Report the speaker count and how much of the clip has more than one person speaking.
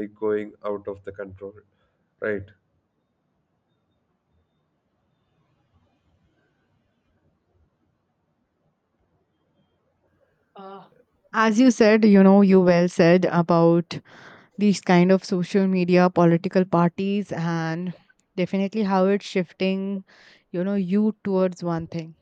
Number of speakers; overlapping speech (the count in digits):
2, no overlap